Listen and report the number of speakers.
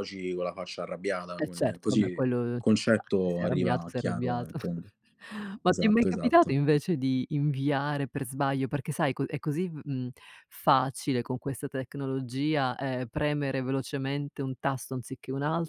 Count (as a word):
two